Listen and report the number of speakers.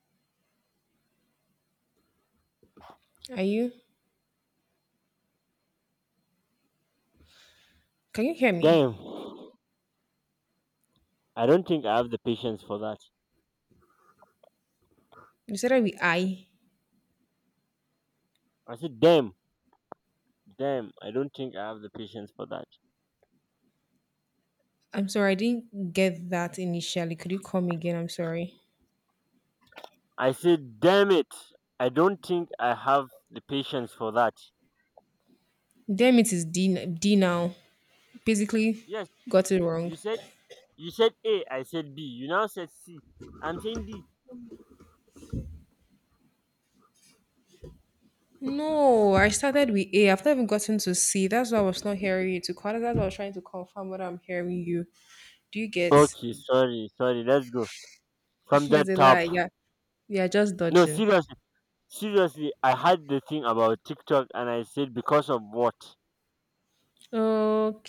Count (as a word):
two